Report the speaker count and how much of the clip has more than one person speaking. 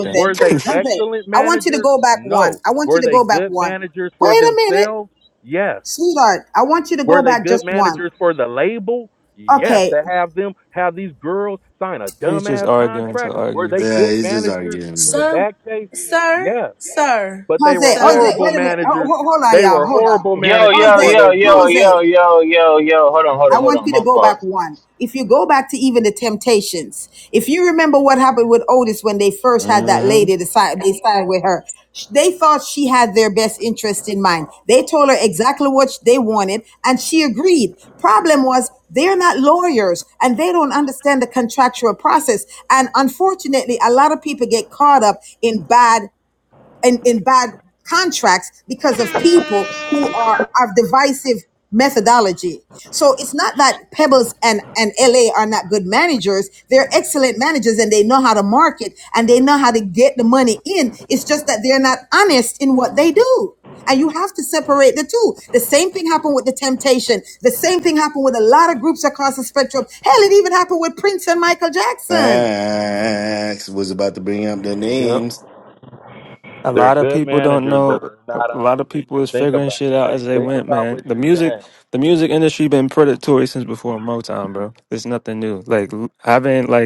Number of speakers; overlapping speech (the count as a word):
six, about 21%